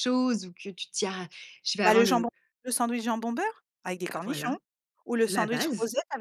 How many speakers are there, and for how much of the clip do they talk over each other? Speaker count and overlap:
two, about 24%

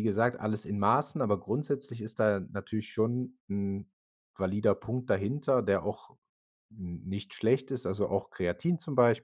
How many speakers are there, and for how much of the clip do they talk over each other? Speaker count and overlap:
one, no overlap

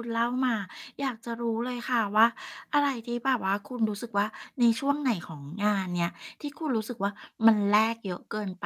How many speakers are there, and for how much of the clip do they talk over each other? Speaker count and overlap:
one, no overlap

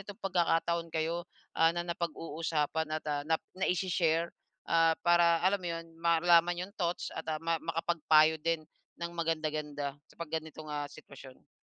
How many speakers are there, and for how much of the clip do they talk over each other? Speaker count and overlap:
one, no overlap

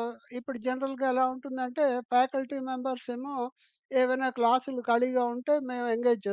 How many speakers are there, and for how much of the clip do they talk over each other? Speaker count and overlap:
one, no overlap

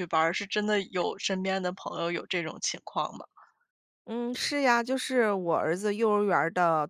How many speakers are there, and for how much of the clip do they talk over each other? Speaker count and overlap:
two, no overlap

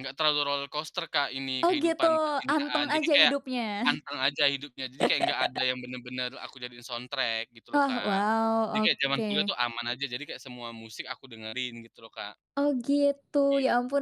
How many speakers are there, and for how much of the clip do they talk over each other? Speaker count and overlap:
two, about 21%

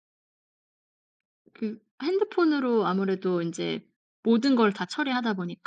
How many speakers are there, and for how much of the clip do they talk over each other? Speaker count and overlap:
one, no overlap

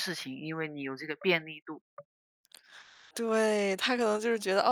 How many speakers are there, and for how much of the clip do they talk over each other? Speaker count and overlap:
two, no overlap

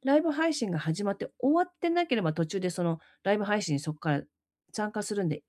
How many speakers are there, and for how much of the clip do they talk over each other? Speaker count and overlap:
one, no overlap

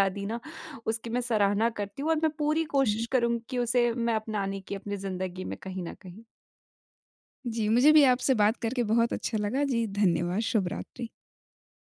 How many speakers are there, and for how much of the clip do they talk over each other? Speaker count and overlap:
two, about 2%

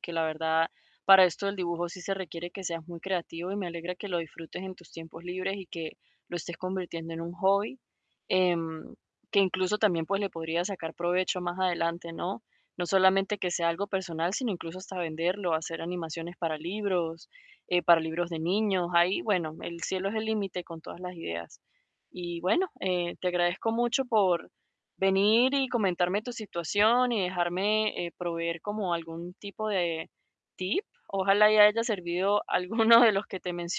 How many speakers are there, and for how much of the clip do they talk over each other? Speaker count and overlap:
one, no overlap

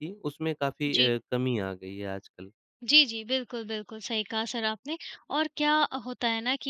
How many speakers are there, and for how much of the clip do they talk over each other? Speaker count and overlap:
two, about 5%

